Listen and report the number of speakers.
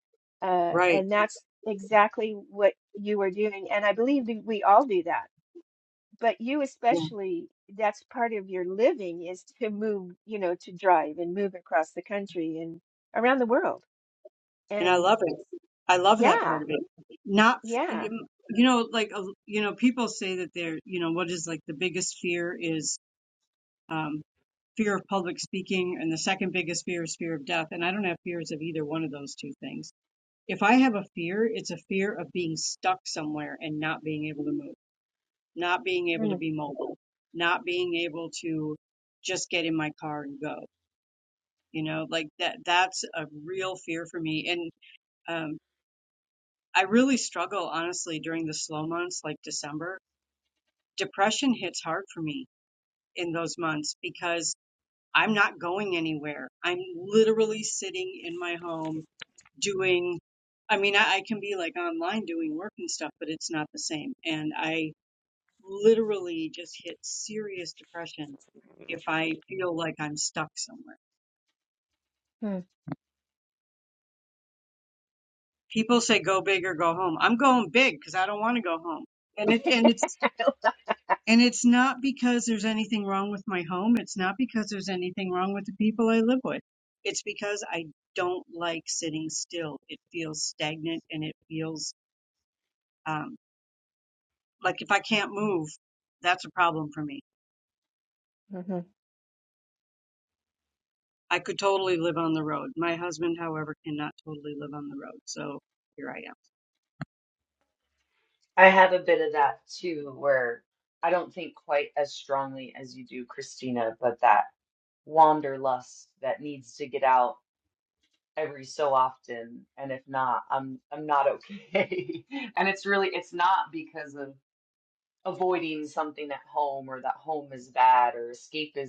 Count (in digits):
3